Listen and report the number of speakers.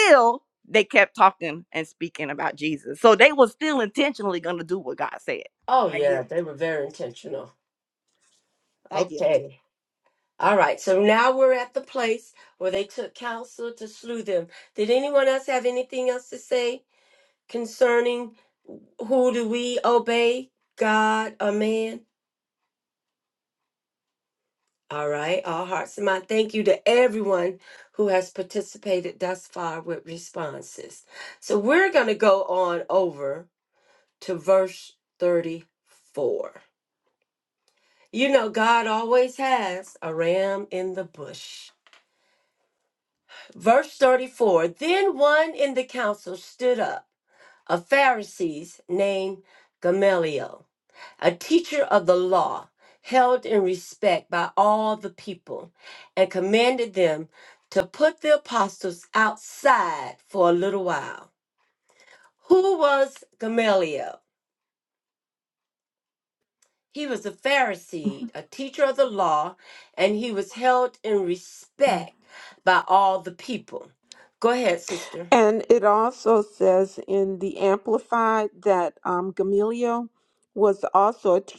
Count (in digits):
3